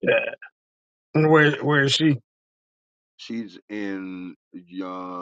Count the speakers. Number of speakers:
2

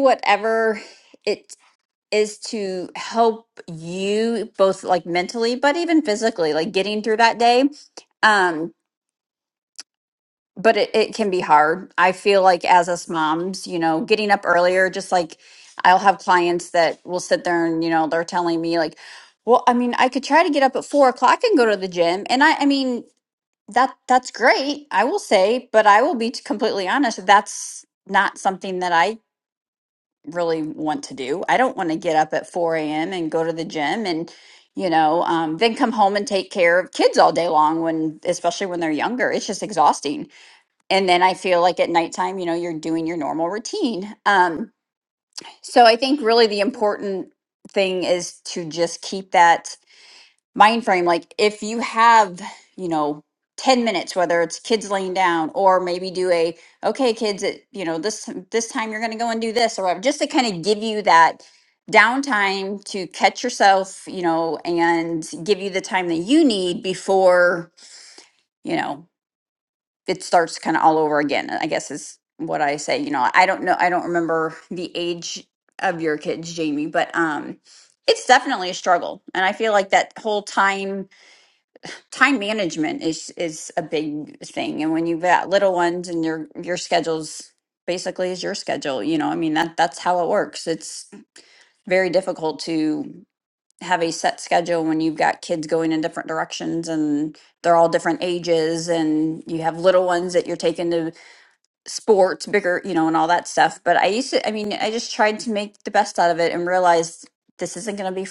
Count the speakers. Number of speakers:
1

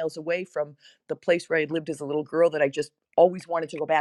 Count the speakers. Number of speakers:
1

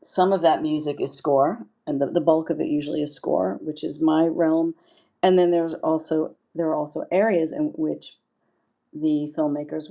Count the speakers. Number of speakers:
1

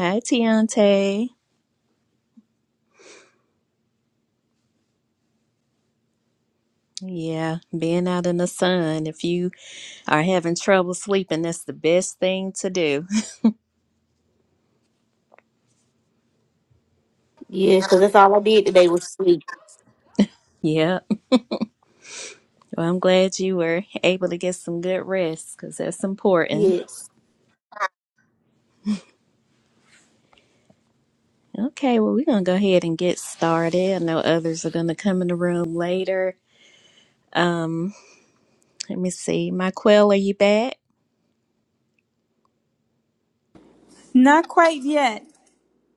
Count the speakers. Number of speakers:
3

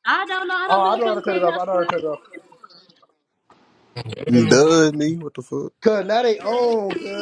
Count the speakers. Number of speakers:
3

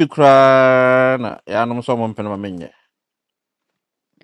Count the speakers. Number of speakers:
1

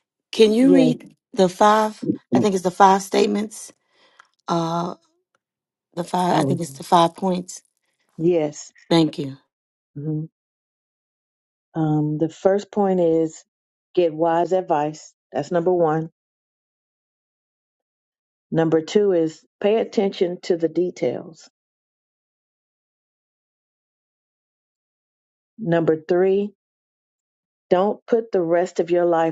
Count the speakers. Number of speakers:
2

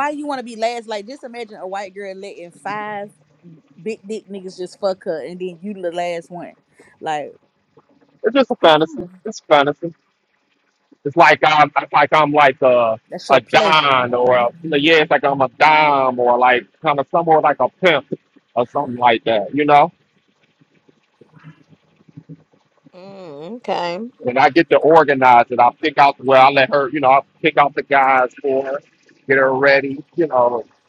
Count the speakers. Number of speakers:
3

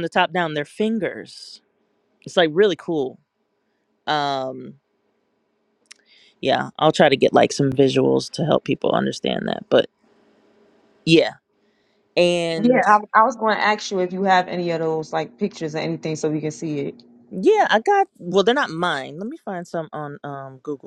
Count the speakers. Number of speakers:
2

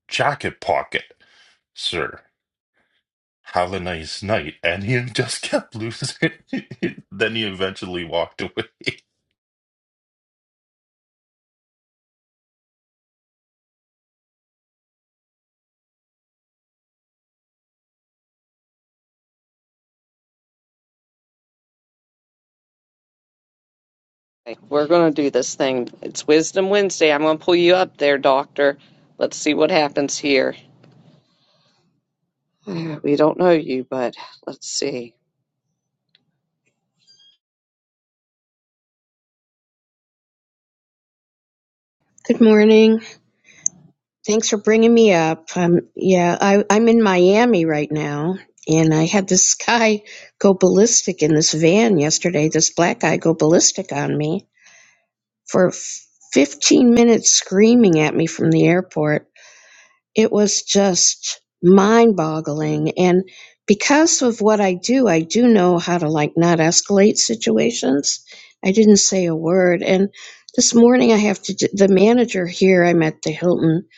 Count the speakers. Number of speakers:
3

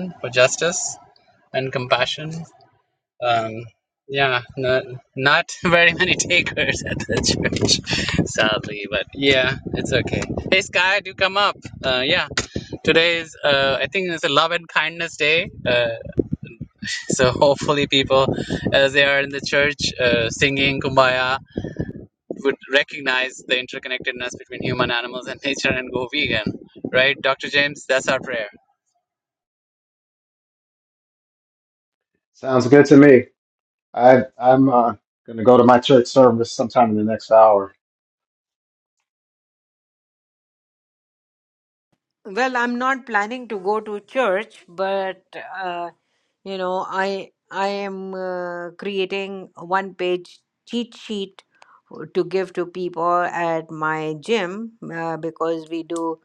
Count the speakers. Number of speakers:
3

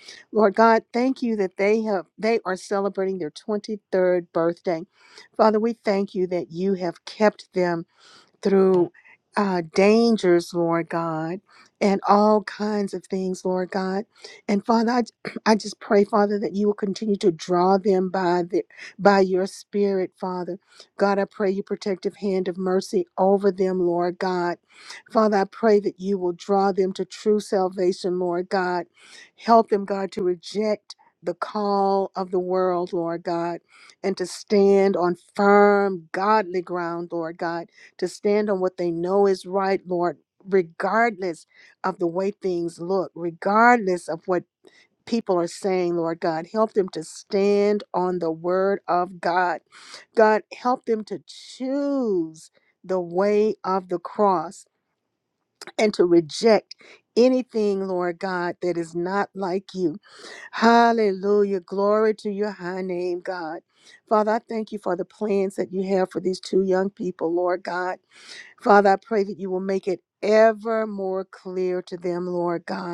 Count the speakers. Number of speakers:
1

